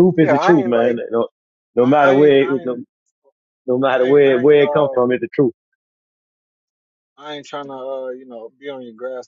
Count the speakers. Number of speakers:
2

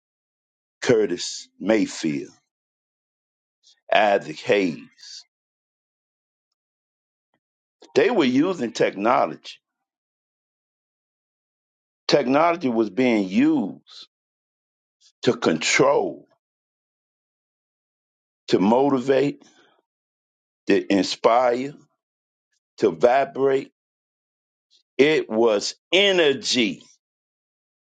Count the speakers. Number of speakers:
1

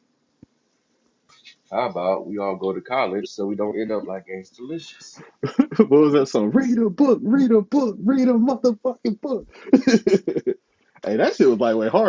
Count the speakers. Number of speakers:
2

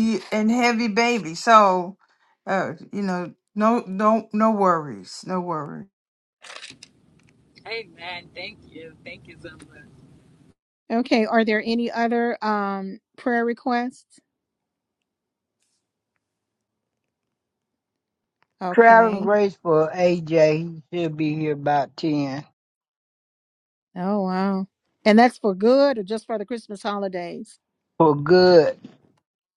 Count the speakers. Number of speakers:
4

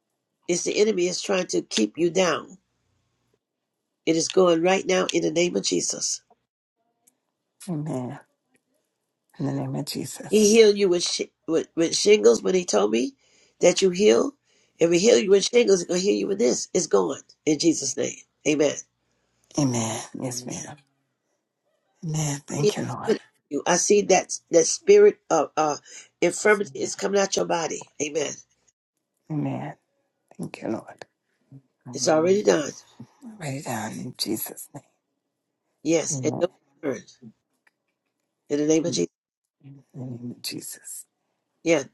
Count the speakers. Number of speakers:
2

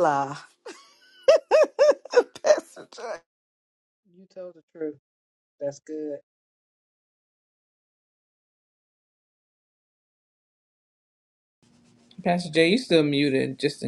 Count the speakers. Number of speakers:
3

